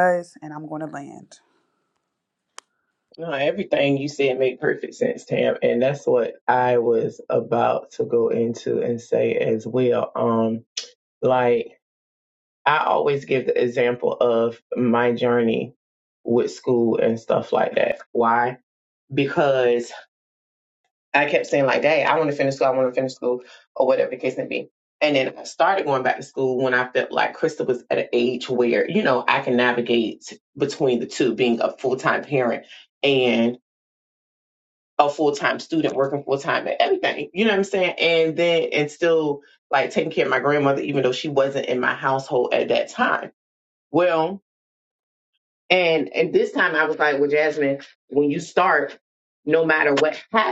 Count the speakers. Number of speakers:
two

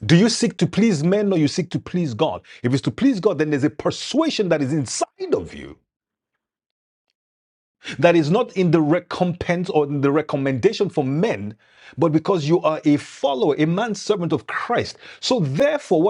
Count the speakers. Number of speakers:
one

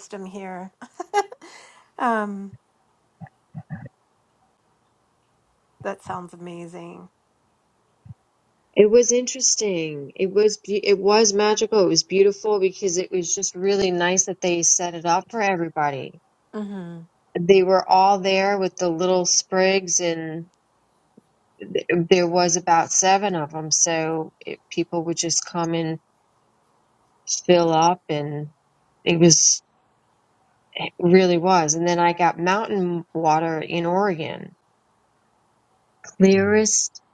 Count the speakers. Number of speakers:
two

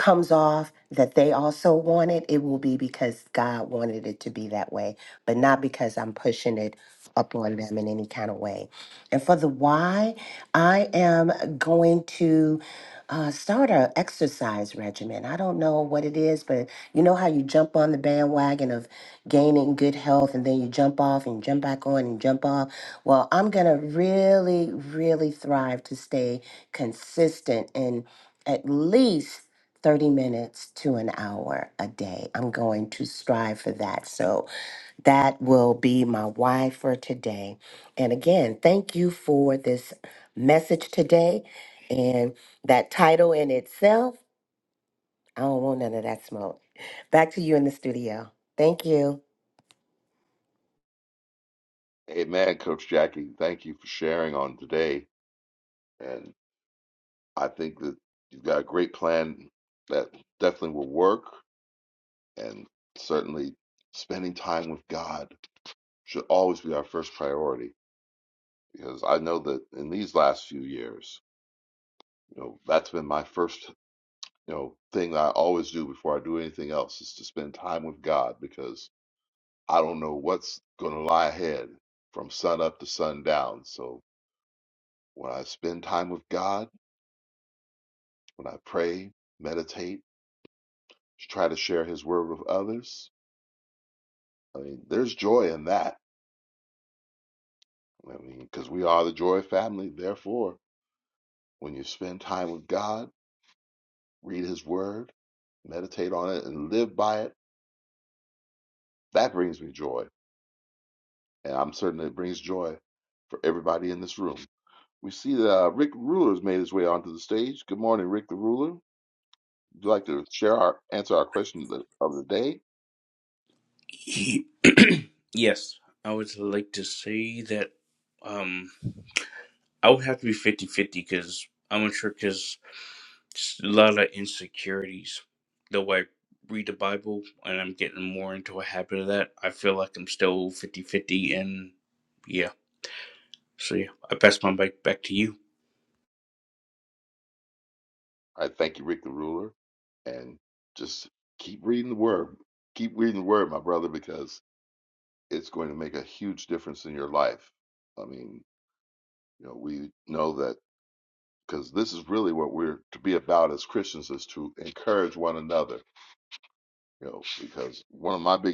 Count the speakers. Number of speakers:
three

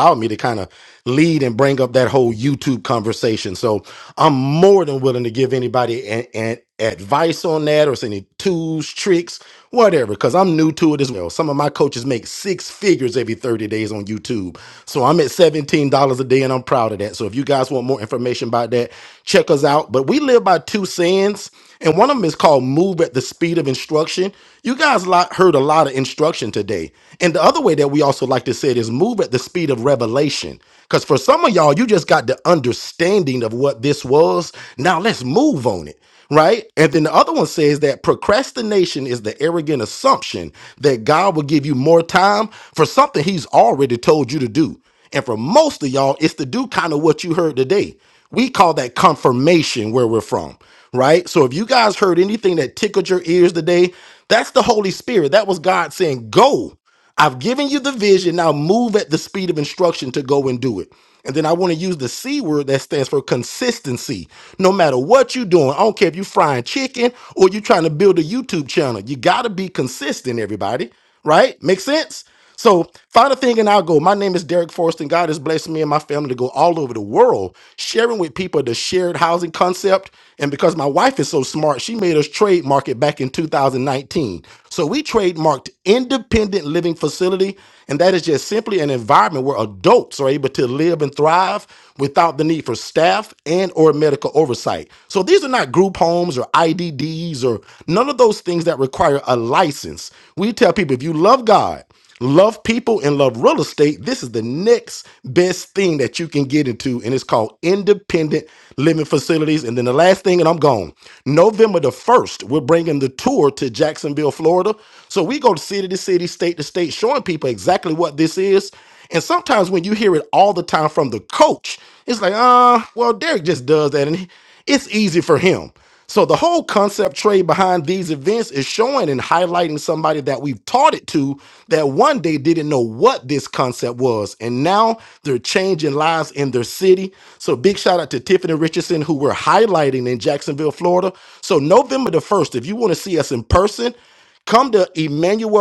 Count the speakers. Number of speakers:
one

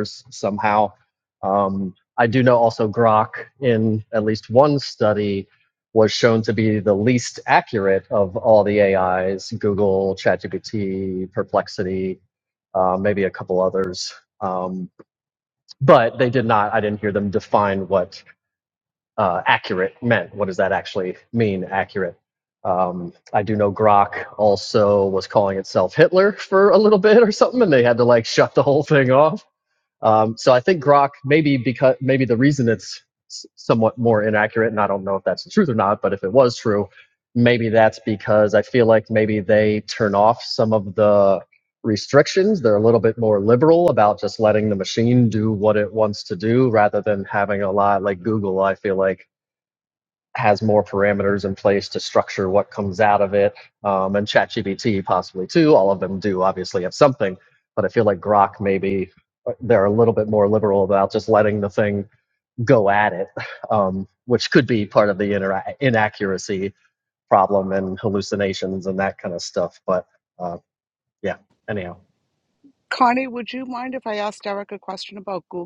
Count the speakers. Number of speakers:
two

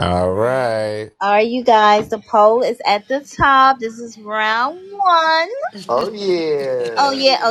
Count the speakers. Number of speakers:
three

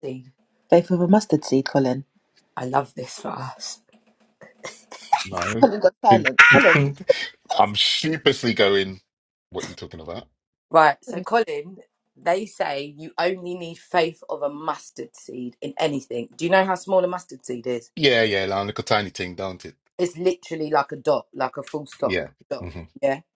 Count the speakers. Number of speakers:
three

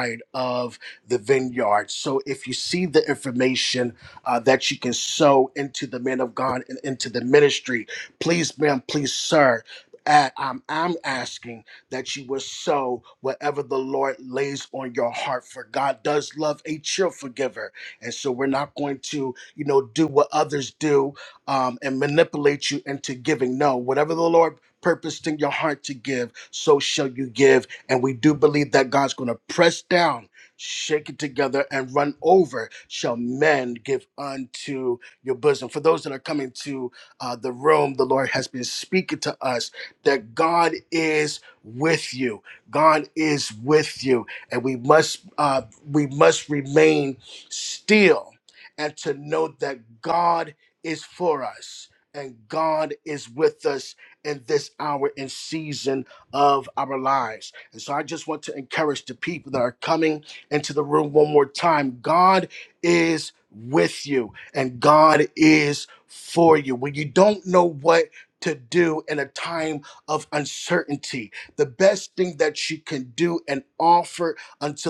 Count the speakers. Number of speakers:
one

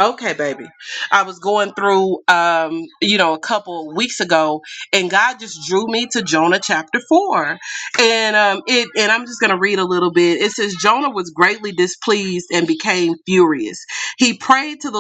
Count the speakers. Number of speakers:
one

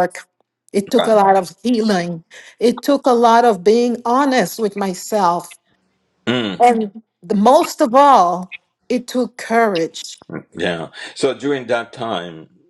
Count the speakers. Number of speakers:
two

